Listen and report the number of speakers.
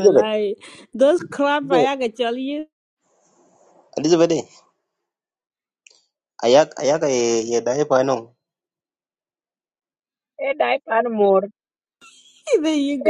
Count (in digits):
3